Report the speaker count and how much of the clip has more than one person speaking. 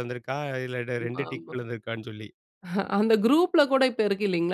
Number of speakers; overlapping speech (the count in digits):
2, about 12%